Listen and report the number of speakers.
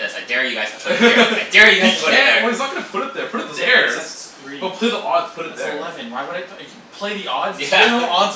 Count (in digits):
3